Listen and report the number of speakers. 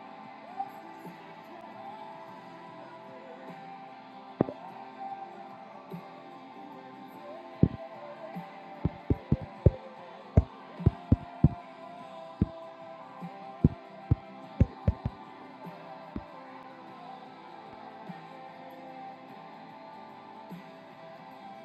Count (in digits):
0